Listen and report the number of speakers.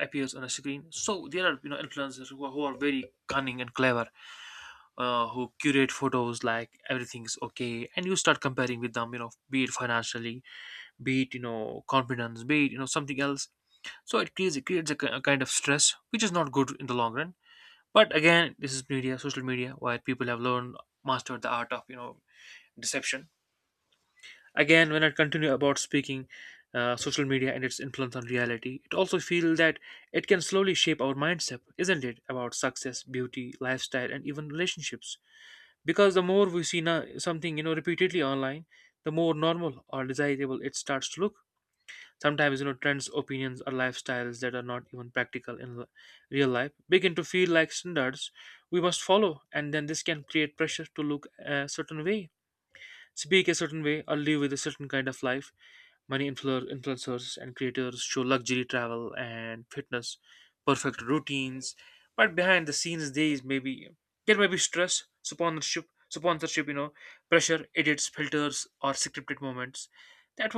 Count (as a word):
one